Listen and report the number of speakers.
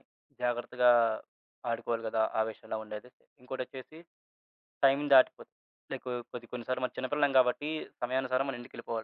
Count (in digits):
1